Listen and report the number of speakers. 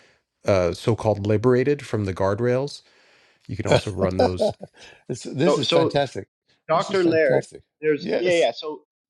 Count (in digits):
3